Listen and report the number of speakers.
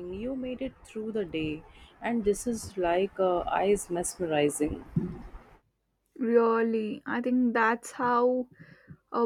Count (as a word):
two